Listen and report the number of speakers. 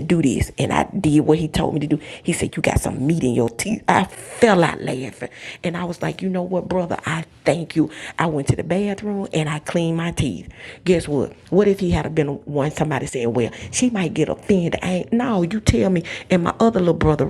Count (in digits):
1